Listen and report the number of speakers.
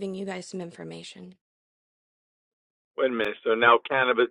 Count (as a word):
two